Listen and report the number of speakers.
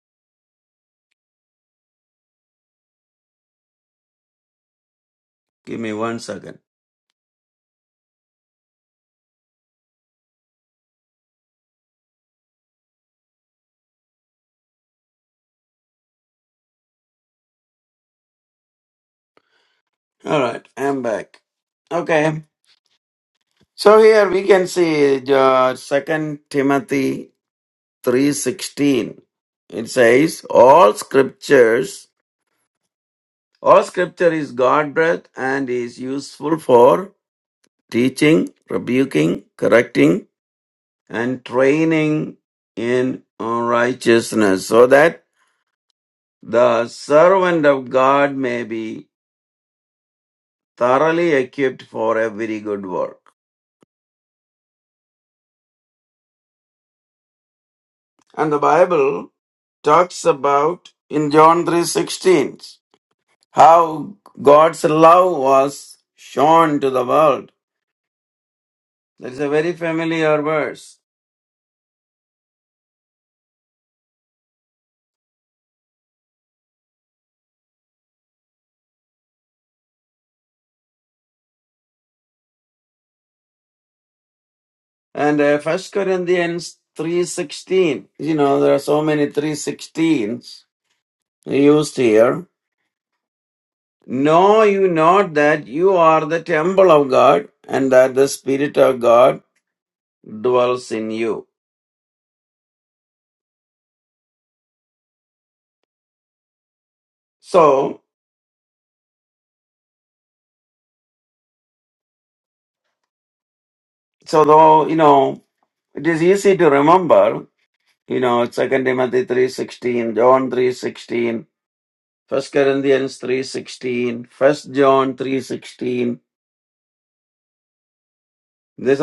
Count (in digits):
1